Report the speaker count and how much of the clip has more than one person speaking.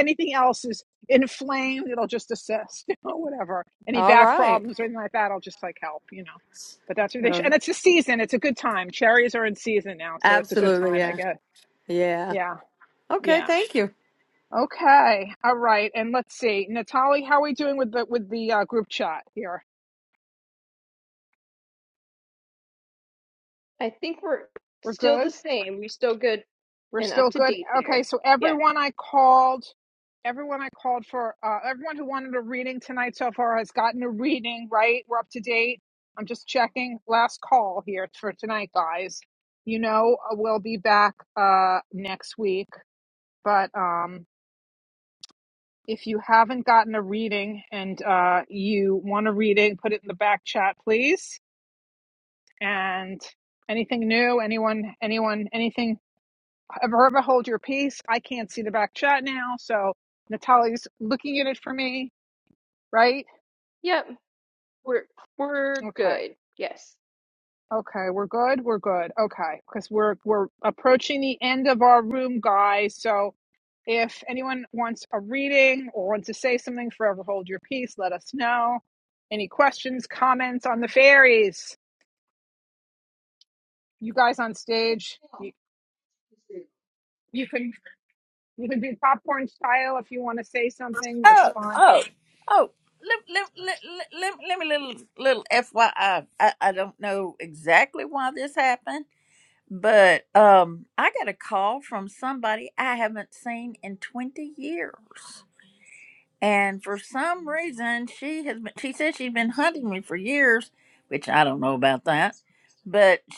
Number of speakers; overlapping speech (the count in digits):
4, about 4%